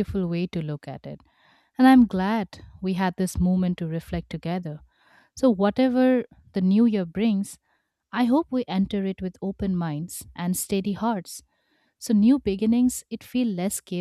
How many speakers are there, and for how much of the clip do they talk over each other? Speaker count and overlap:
one, no overlap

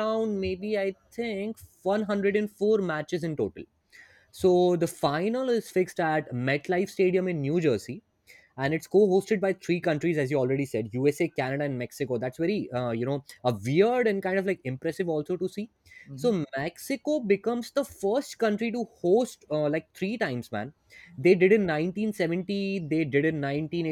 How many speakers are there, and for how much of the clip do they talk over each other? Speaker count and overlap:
one, no overlap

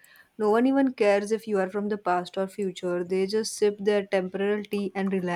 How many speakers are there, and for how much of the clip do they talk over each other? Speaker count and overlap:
one, no overlap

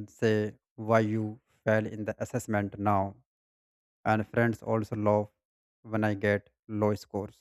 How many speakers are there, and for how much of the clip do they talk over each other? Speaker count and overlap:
one, no overlap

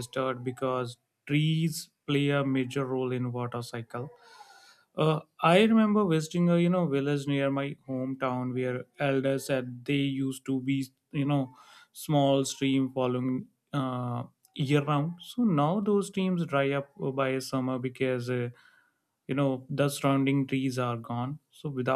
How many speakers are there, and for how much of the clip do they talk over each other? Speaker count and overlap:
one, no overlap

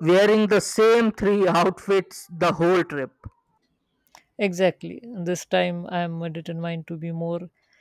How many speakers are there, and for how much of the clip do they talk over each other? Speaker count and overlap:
two, no overlap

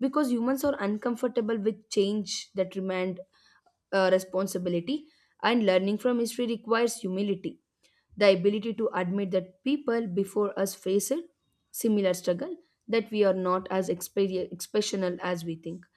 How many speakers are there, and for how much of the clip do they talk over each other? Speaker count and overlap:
one, no overlap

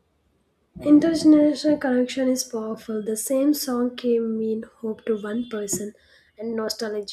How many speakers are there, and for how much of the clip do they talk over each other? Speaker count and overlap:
one, no overlap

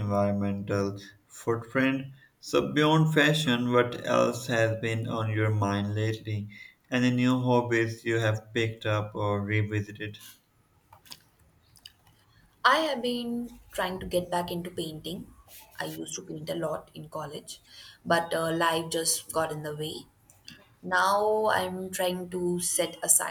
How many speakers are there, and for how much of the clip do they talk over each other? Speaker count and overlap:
two, no overlap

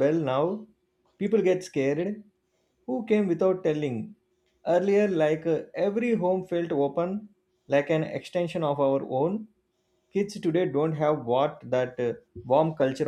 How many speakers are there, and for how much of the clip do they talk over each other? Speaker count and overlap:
one, no overlap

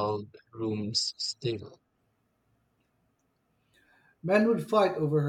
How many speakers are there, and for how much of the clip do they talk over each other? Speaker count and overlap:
two, no overlap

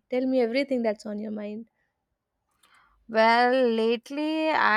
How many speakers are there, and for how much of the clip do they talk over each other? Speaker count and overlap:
two, no overlap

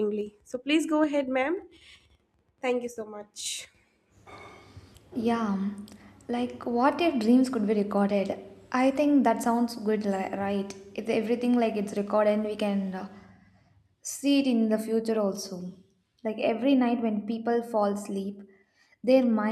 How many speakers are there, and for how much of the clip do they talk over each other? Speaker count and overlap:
two, no overlap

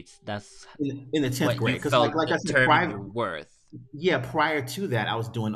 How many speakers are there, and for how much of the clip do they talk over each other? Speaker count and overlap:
two, about 30%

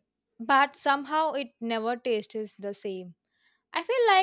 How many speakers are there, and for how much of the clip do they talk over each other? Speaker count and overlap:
one, no overlap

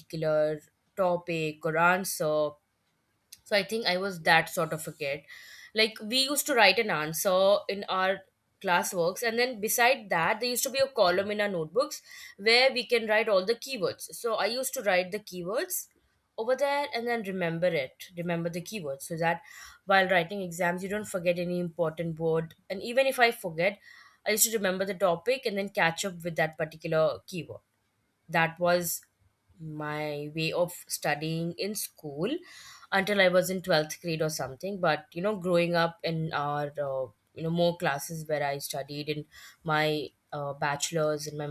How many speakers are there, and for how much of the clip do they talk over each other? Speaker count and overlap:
one, no overlap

